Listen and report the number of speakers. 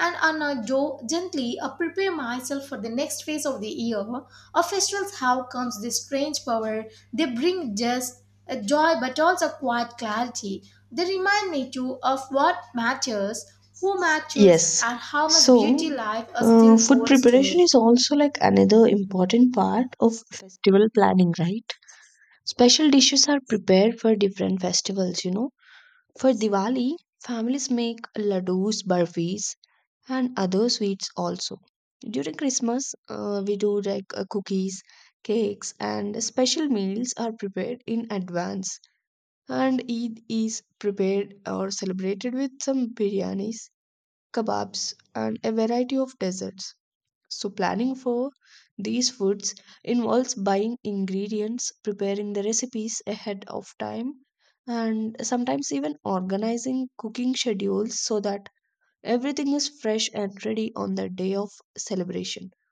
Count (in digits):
2